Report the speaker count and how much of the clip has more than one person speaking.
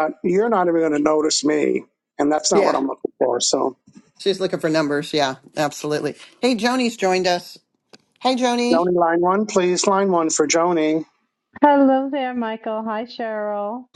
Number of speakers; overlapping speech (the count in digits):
3, about 3%